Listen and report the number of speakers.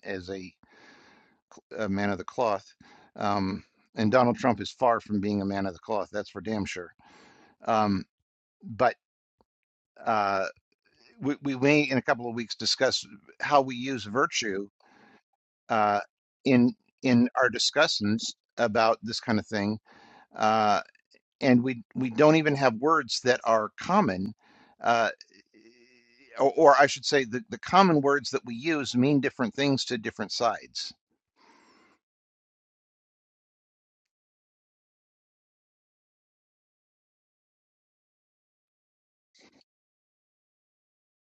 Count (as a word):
one